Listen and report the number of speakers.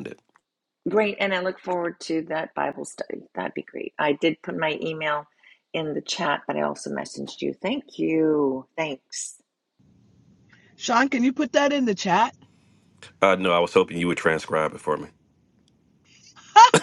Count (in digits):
3